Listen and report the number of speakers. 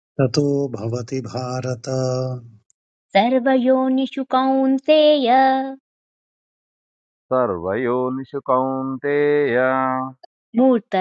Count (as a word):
three